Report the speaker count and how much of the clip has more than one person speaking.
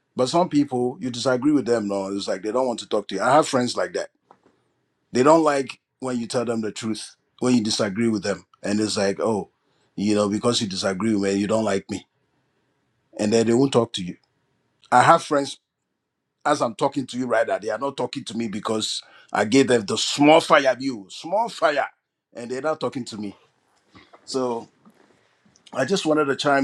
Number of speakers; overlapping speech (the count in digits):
1, no overlap